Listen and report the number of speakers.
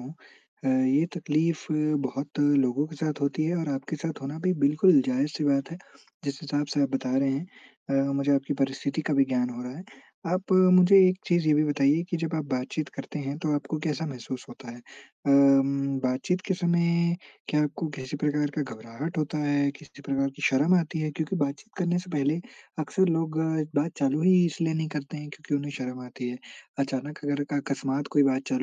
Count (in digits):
1